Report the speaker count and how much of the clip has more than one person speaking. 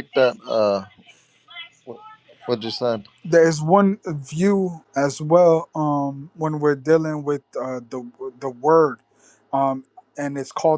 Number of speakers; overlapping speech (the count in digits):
2, no overlap